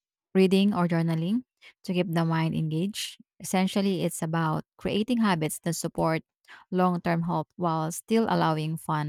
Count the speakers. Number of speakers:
1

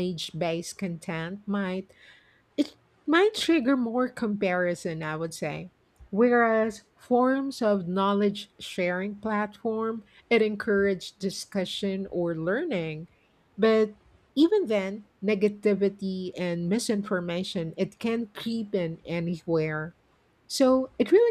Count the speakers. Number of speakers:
1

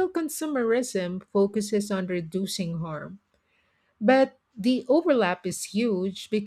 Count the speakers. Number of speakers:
1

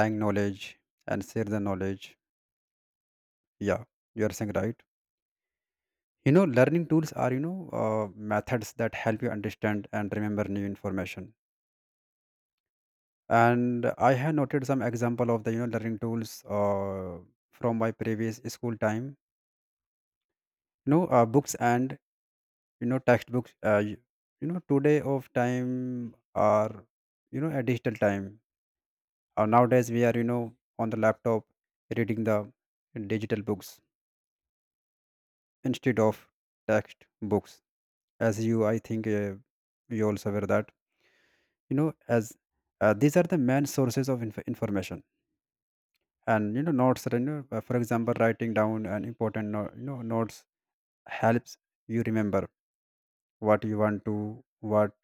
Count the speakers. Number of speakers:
1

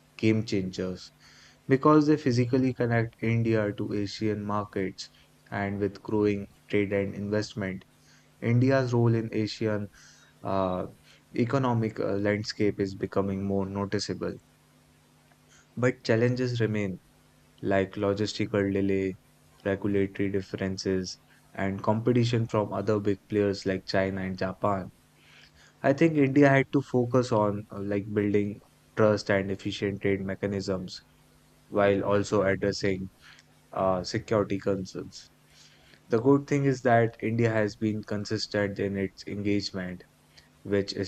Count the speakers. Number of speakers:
1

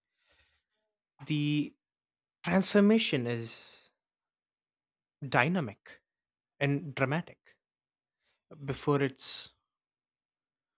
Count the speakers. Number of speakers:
1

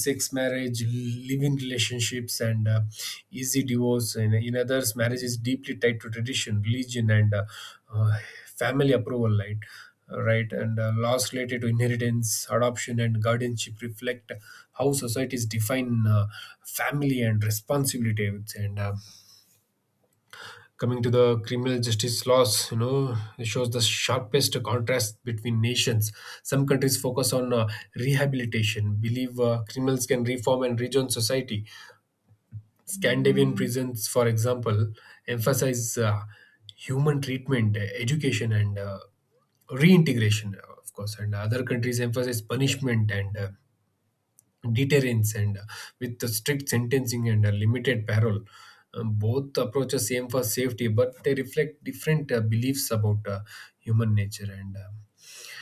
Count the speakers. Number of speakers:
1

